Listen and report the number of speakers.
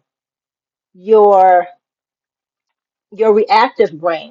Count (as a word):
one